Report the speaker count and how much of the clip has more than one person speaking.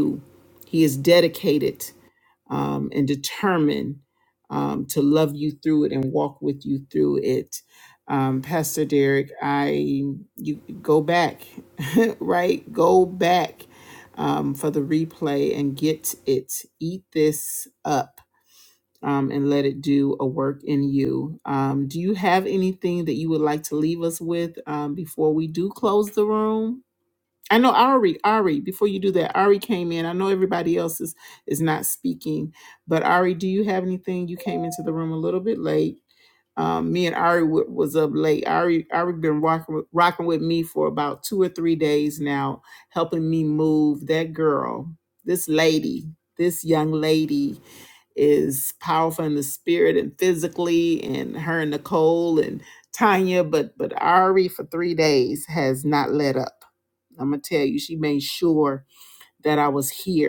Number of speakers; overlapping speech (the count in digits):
1, no overlap